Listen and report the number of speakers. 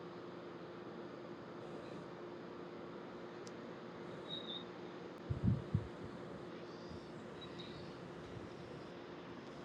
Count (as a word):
zero